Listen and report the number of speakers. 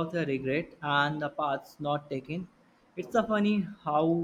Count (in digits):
1